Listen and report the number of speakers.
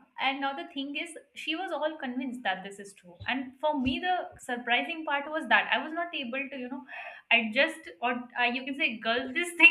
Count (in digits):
1